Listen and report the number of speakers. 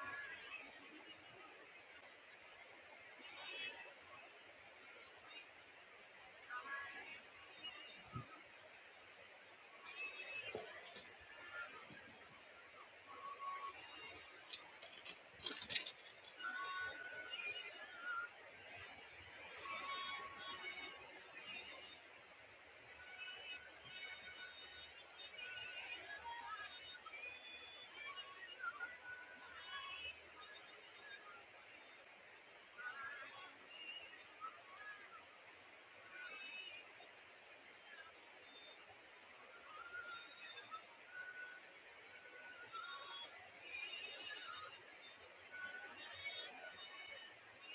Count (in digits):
0